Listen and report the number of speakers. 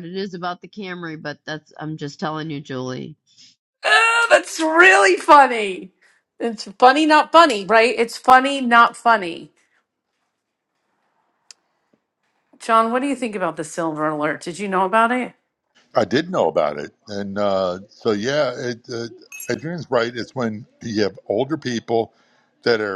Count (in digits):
3